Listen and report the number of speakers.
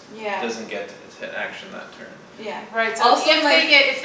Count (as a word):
three